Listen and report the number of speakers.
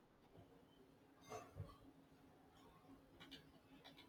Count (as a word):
zero